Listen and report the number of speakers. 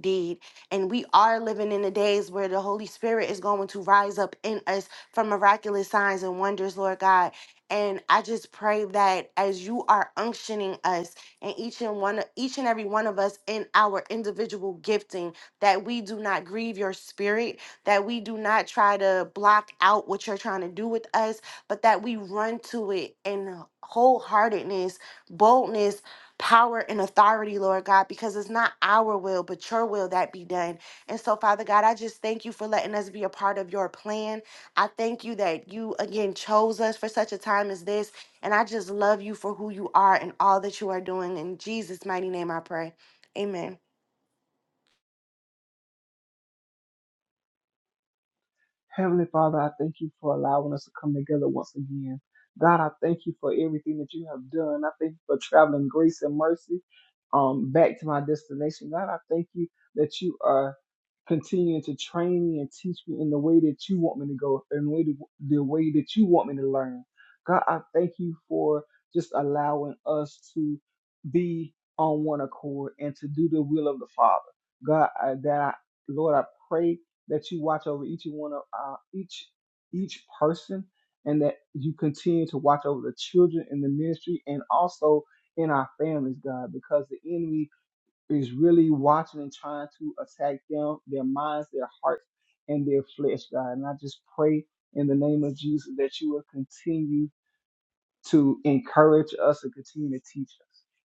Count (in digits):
2